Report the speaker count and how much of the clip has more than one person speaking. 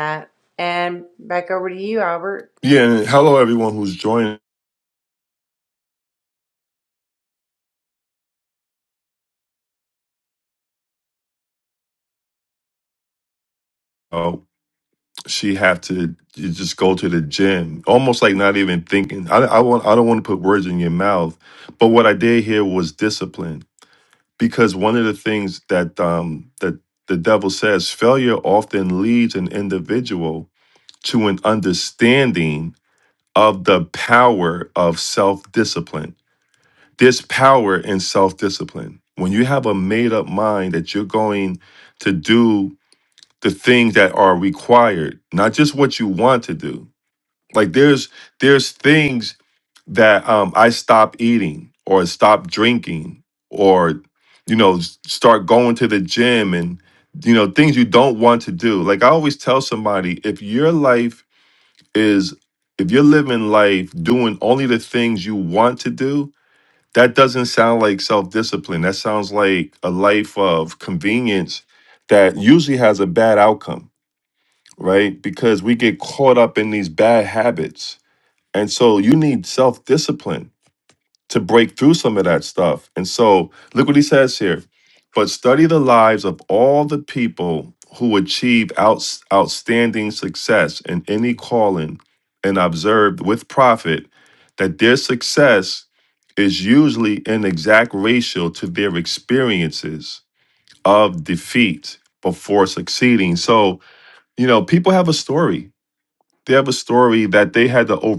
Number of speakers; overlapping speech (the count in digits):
2, no overlap